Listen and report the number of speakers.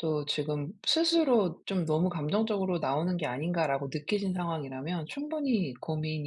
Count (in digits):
1